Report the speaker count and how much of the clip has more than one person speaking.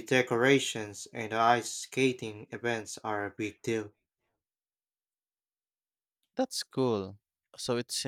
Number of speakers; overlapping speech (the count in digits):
2, no overlap